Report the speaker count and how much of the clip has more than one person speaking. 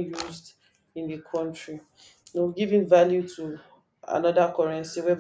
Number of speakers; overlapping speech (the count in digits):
1, no overlap